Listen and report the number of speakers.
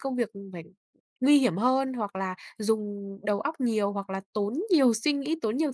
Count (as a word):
one